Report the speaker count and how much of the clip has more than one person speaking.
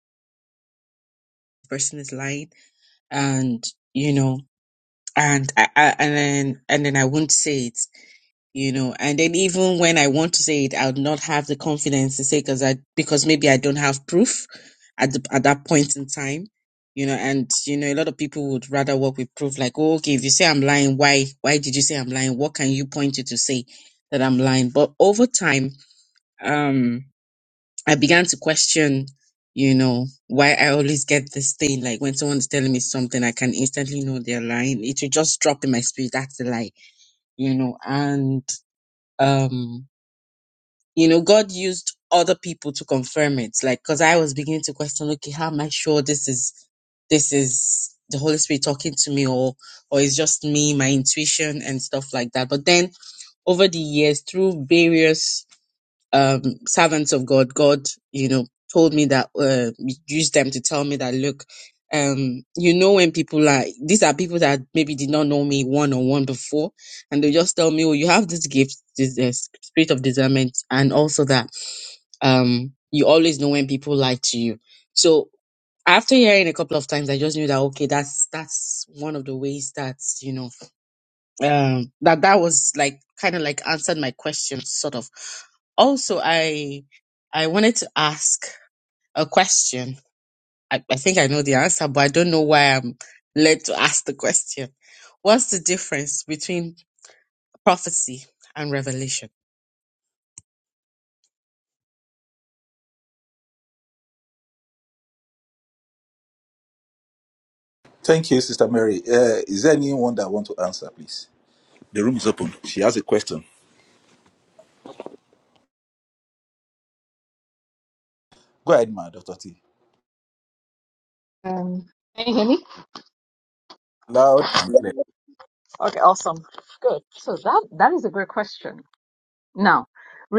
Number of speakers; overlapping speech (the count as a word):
three, no overlap